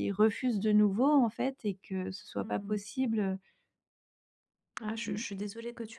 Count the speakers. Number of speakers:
two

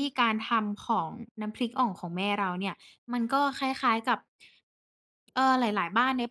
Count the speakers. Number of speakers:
one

